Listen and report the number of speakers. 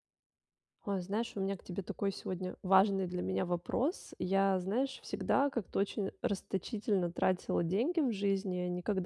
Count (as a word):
one